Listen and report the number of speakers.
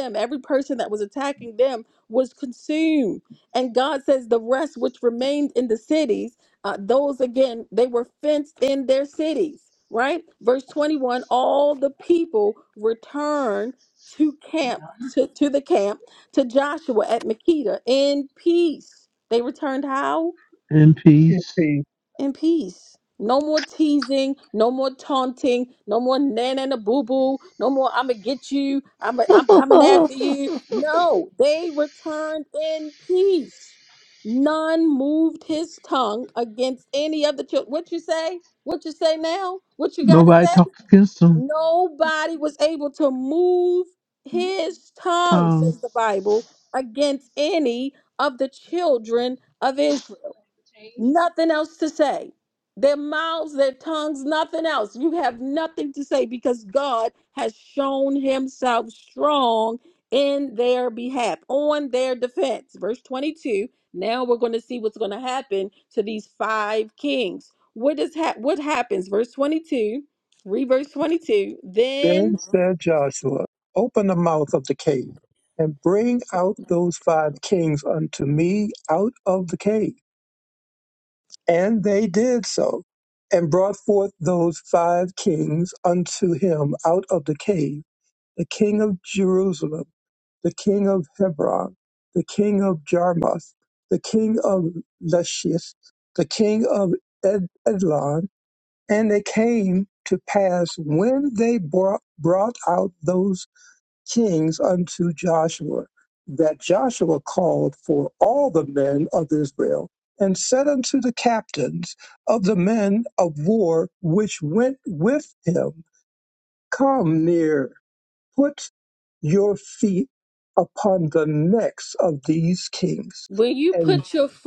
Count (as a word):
three